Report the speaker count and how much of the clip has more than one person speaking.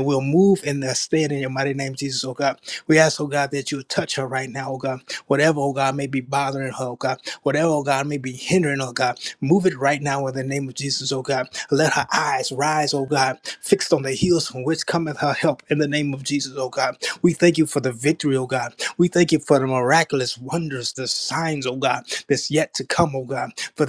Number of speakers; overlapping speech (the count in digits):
1, no overlap